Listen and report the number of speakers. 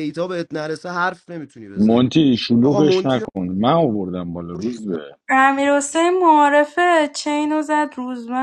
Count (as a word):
three